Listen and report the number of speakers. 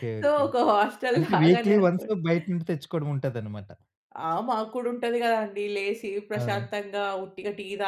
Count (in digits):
2